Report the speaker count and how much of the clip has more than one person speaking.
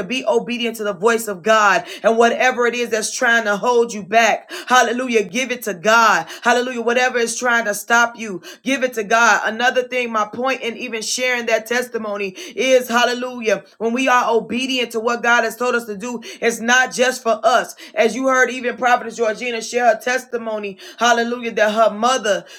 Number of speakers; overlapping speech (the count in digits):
1, no overlap